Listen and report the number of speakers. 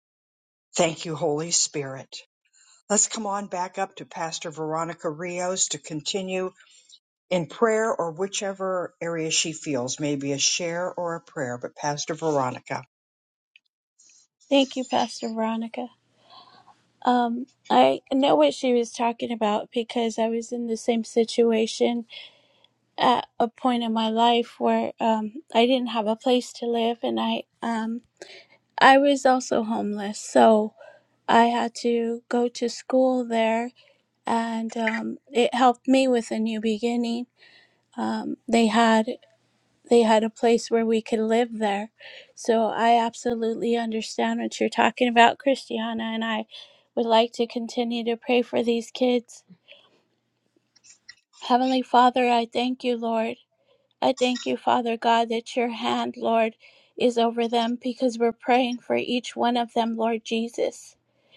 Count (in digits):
2